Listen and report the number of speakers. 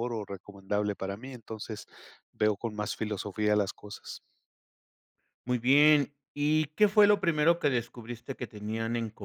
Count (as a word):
two